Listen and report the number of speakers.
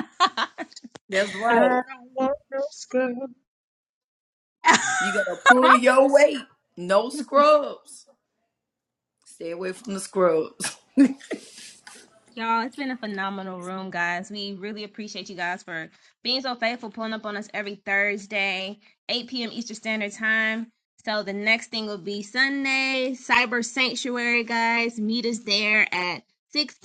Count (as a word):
three